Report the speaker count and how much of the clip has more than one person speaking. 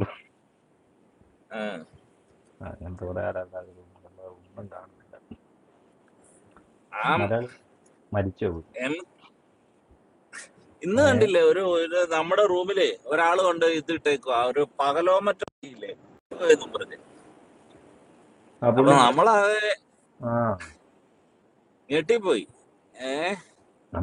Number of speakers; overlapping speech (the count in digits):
2, about 3%